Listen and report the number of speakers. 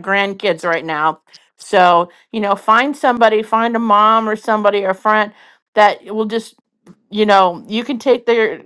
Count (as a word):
one